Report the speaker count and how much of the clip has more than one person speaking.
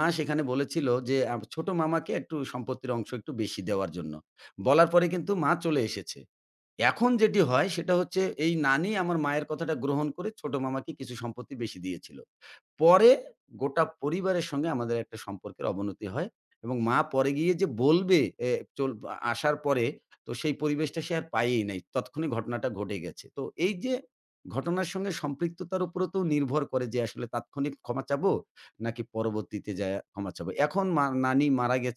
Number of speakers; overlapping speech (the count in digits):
1, no overlap